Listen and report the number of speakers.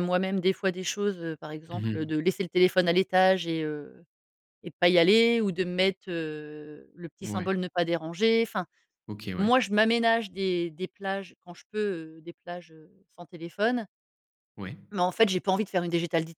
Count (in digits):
2